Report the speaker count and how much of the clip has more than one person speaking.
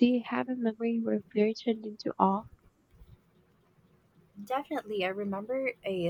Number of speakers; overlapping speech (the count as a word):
two, no overlap